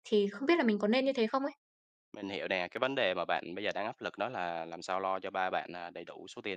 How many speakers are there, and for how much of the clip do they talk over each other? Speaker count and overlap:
two, no overlap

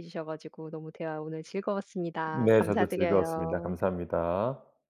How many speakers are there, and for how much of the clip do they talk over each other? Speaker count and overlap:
two, about 28%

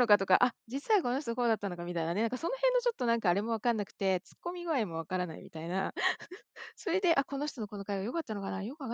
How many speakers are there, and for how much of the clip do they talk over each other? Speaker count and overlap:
one, no overlap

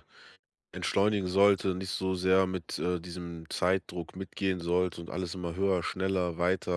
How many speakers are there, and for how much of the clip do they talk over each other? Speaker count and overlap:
one, no overlap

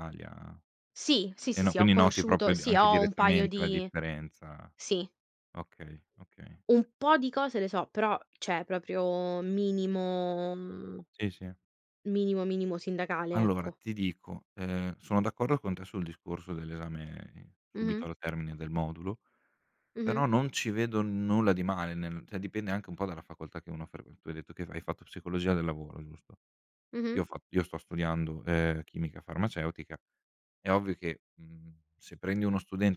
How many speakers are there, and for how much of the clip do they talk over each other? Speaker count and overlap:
two, about 10%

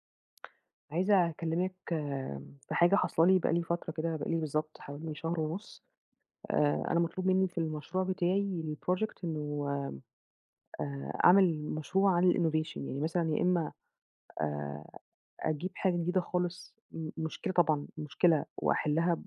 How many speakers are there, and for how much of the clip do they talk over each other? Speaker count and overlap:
one, no overlap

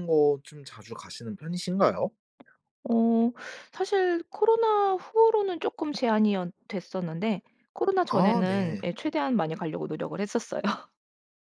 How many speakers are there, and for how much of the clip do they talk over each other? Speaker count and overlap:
two, about 6%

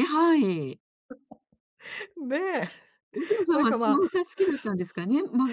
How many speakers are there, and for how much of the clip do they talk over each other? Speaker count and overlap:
two, about 10%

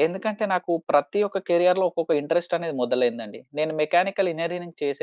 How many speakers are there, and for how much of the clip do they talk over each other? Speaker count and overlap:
one, no overlap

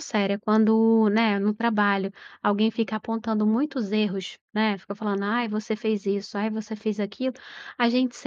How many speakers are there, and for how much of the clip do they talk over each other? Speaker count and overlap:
one, no overlap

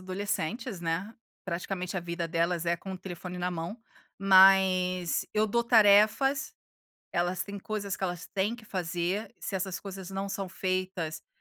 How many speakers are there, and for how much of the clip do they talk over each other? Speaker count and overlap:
one, no overlap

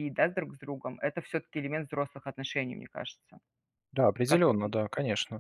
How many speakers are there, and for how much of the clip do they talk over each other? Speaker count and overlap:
two, about 8%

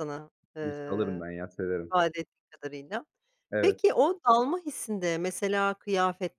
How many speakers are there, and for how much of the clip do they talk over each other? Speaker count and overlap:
two, about 12%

